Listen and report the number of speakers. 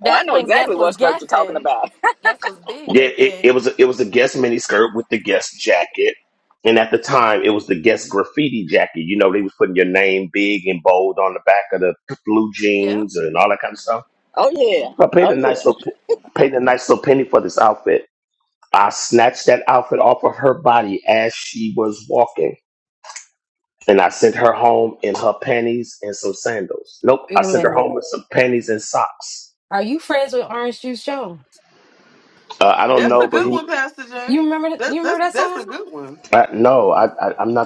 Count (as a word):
five